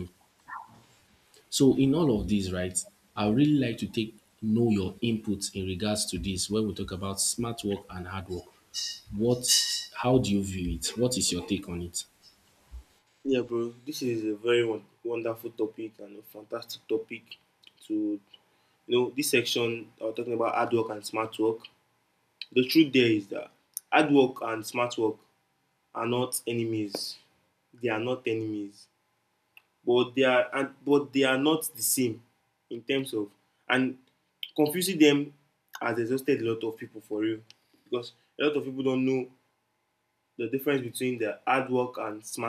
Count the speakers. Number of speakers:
2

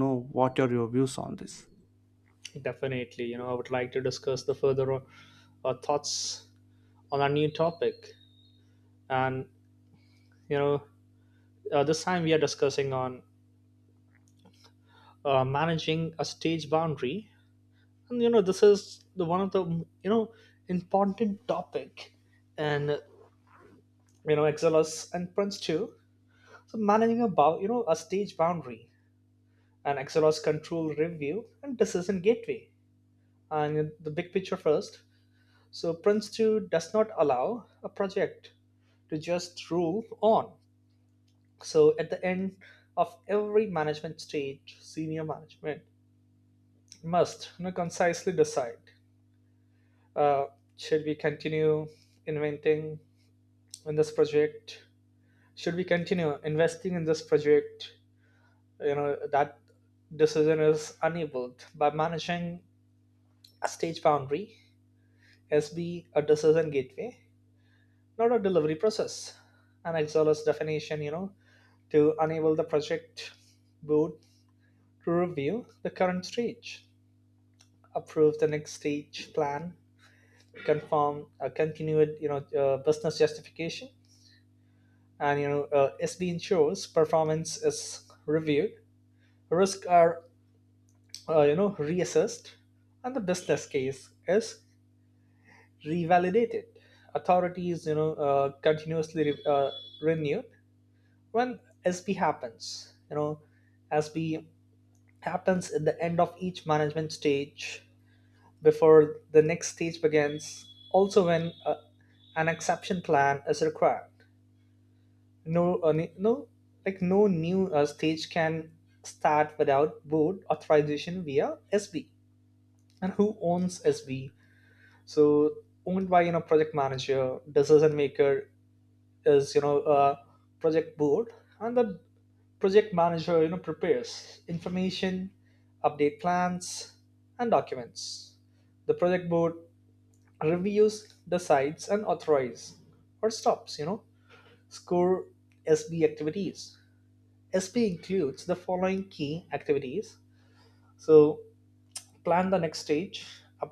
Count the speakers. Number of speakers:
2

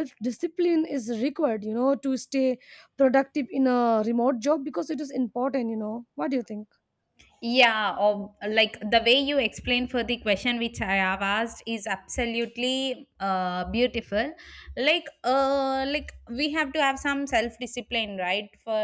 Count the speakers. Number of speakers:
2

